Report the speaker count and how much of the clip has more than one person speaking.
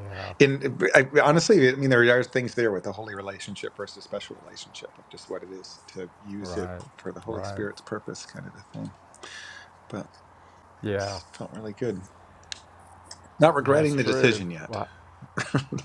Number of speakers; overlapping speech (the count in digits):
2, about 13%